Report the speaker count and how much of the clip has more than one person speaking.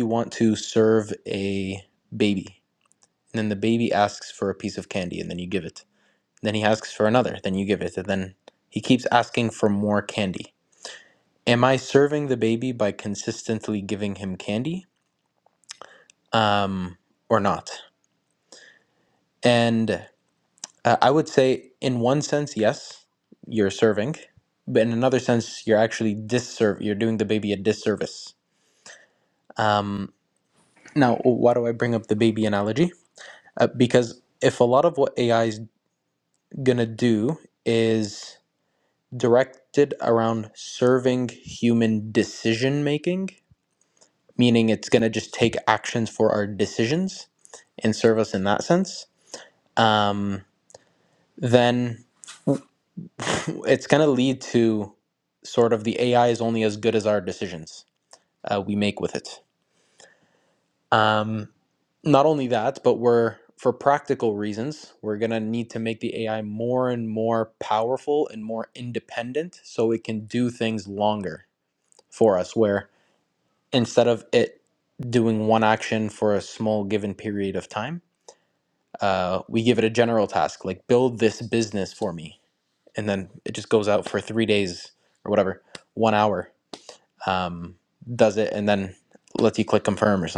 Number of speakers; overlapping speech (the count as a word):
one, no overlap